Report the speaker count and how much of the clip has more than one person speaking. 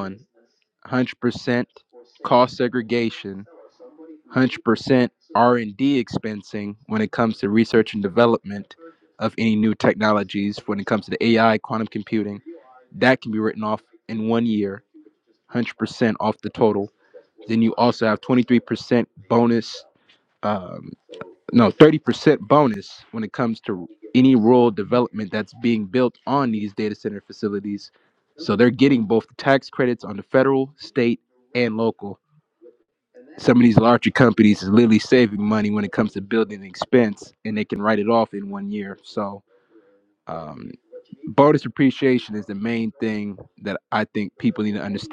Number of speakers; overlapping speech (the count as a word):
one, no overlap